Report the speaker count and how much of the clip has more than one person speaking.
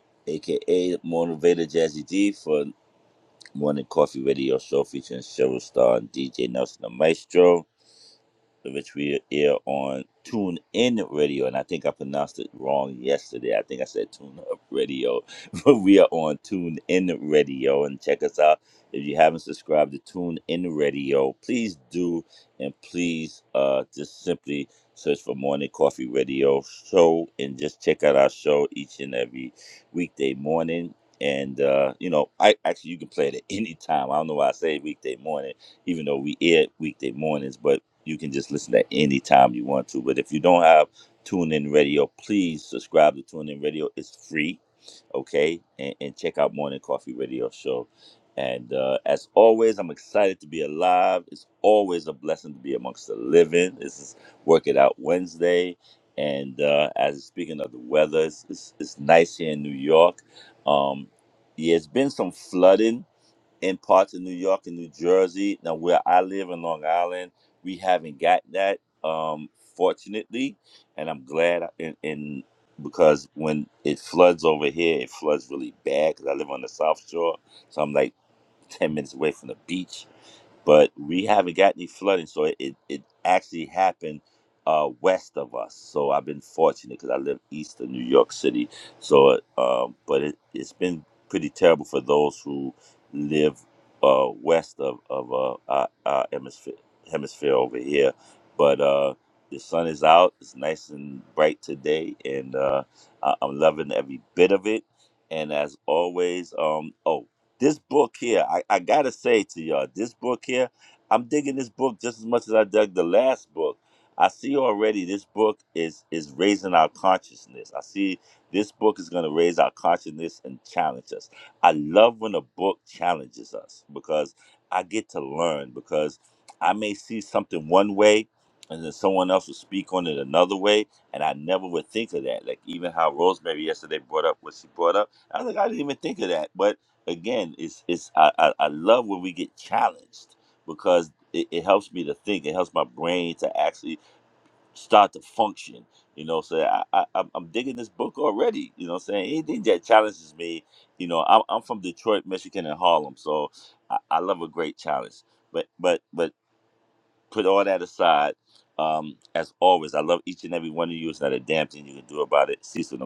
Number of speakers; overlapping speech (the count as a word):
one, no overlap